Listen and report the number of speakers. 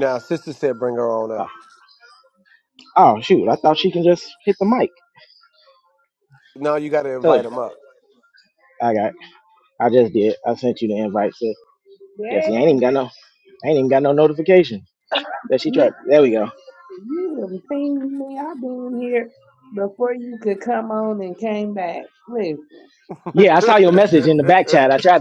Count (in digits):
3